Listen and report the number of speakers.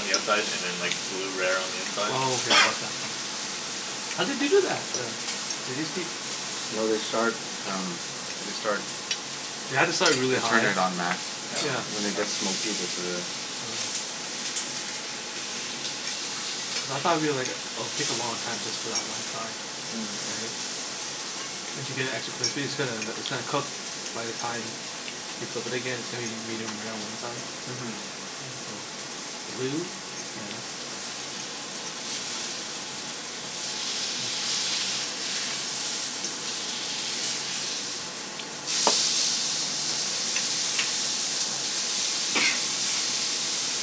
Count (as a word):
three